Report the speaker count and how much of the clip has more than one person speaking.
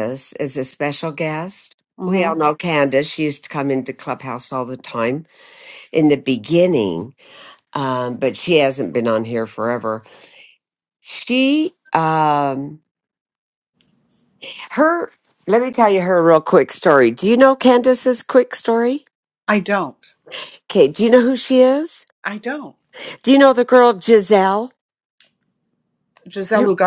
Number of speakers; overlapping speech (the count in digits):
2, about 2%